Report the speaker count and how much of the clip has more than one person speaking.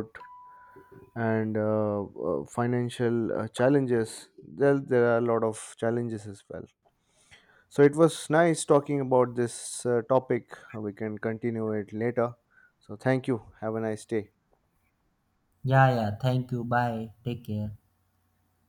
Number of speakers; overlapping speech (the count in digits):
2, no overlap